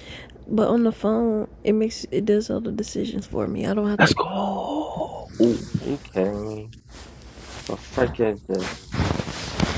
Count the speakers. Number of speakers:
three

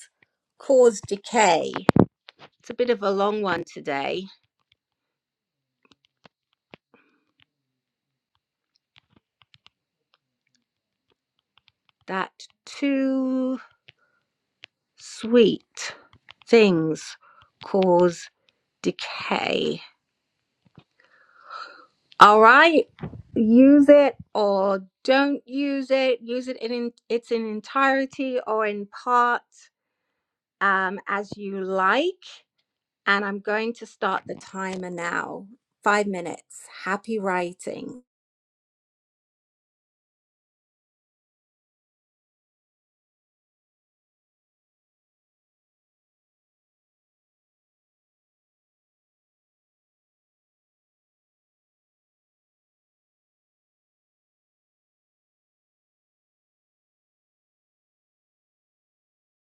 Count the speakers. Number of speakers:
one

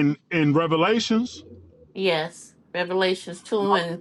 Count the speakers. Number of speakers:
two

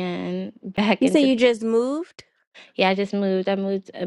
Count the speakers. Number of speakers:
two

